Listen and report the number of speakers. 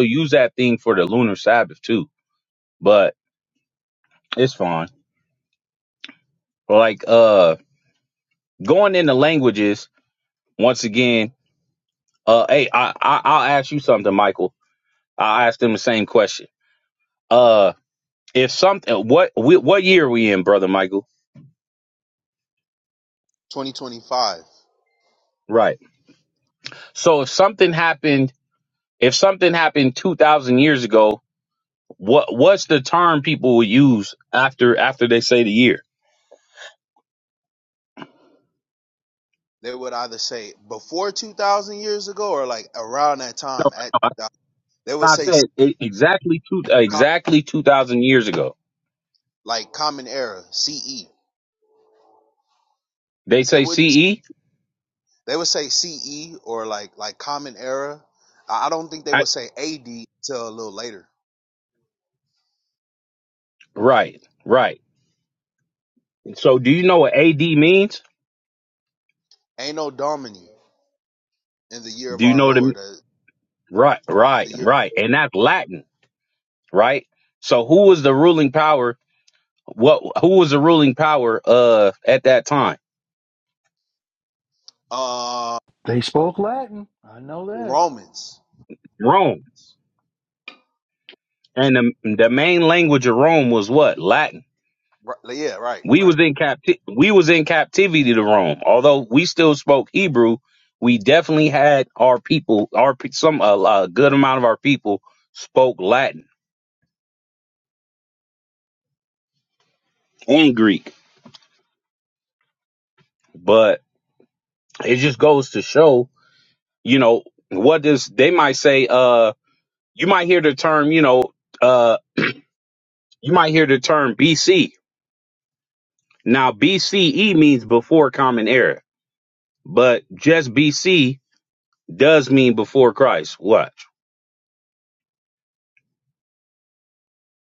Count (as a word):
three